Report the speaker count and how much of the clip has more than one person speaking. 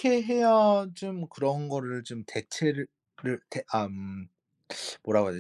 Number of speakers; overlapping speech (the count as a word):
one, no overlap